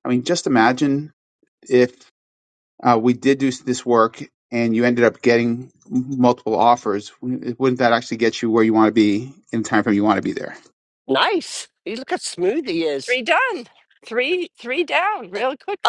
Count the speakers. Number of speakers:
3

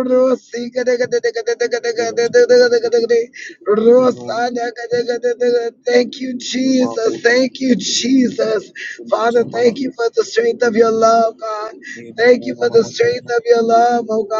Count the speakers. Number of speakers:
1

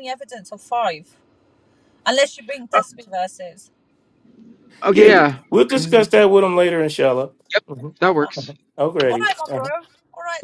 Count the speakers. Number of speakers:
3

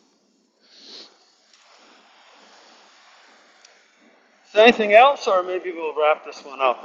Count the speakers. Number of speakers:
1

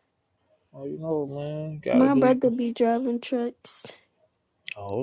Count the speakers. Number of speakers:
2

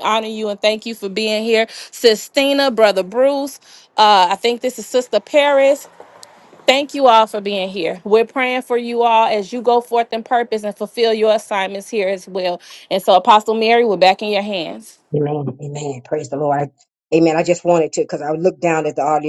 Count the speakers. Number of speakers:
2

